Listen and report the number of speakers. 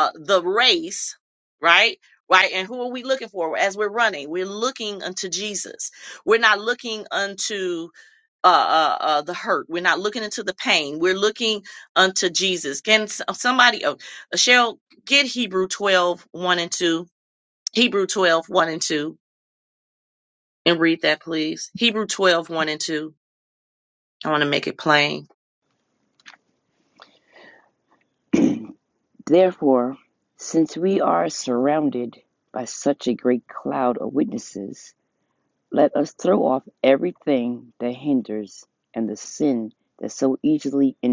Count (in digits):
2